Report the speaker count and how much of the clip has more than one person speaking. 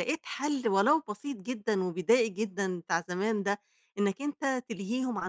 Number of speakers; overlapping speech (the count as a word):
one, no overlap